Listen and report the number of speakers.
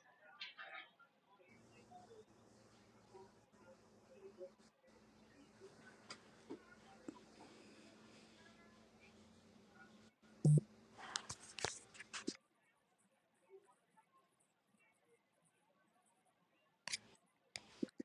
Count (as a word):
zero